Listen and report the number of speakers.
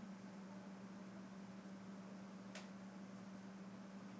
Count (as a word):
zero